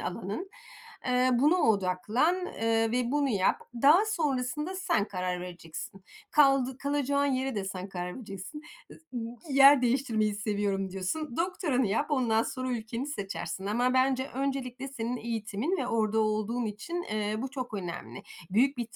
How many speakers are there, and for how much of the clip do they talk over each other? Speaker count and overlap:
1, no overlap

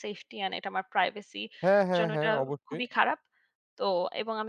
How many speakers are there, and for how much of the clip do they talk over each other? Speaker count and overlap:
2, about 13%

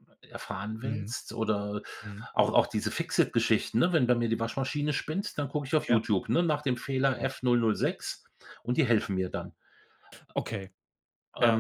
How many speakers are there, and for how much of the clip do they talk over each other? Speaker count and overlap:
2, about 6%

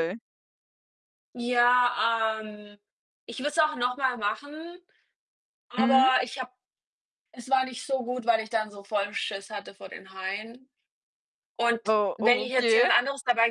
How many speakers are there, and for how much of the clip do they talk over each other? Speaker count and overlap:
2, about 9%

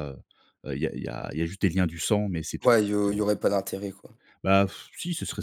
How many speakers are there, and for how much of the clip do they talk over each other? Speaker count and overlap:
2, about 1%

